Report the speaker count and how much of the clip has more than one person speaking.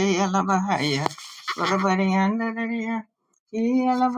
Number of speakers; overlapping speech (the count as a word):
one, no overlap